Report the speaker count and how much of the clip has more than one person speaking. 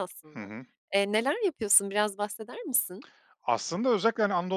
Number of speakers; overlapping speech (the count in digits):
2, about 3%